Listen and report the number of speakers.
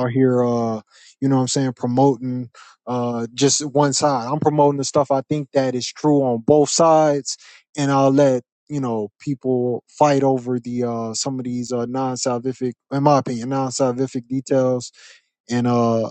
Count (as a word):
one